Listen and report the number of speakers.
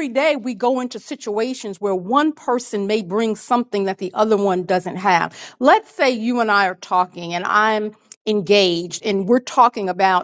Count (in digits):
1